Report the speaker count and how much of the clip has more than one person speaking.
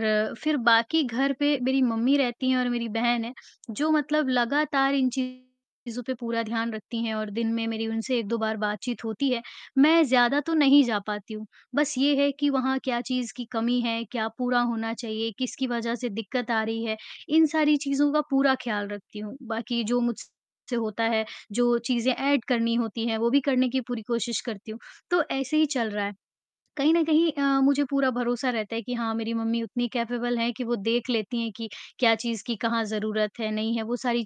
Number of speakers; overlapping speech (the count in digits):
1, no overlap